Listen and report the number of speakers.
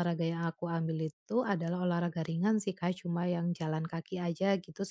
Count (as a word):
one